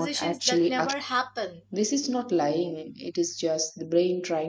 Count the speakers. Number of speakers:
2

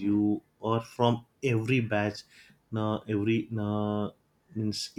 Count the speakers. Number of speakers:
1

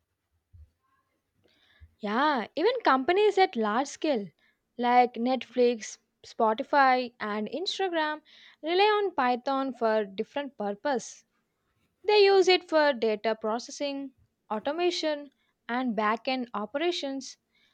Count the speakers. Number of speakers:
1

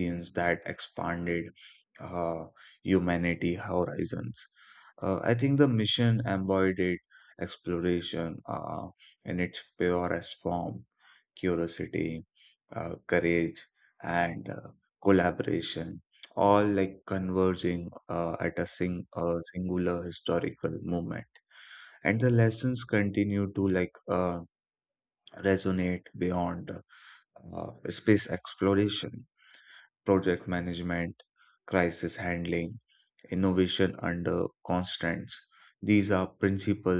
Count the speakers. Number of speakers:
1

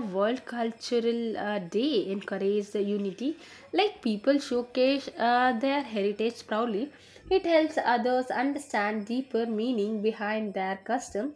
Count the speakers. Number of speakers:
1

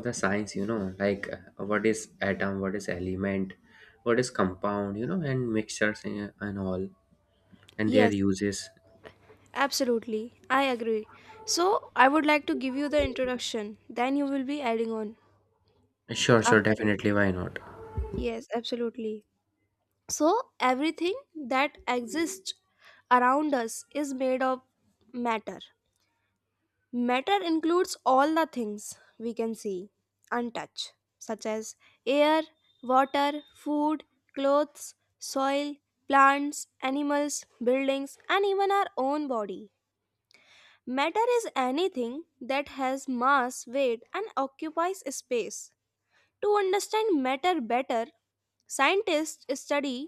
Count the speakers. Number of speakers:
2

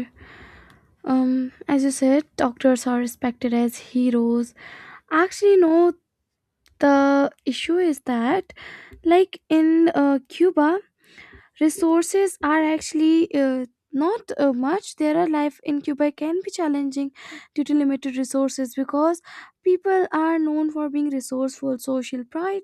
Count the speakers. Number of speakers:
1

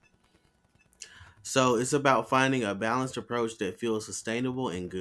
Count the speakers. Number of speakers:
1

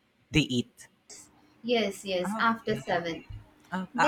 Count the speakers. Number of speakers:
2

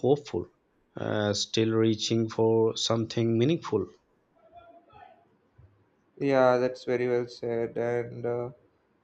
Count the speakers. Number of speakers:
2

